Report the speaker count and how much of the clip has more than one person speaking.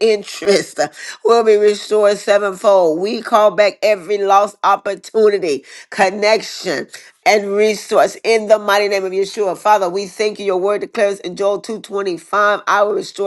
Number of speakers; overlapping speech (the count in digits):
1, no overlap